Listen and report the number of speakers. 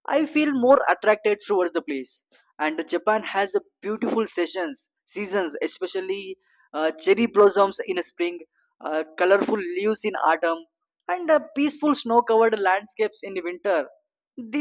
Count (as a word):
one